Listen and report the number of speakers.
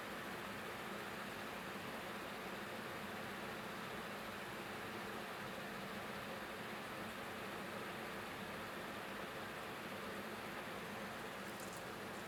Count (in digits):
0